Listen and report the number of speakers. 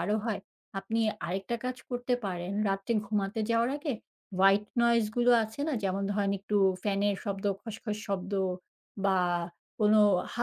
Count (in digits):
1